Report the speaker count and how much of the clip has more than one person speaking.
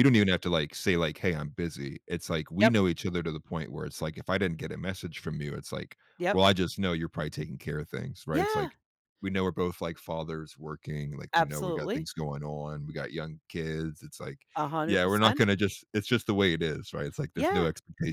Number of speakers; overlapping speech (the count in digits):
2, about 12%